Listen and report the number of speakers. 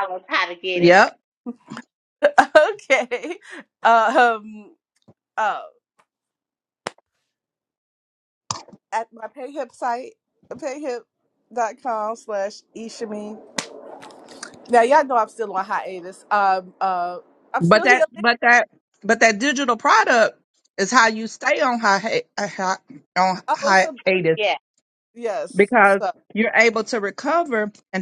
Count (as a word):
three